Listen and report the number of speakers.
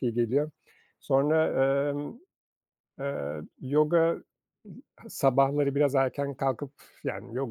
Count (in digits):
1